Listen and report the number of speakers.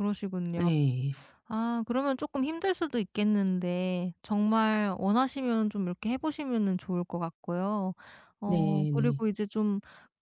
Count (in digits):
2